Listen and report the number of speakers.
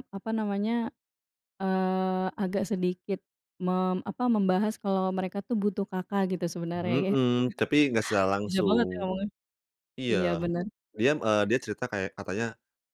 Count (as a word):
two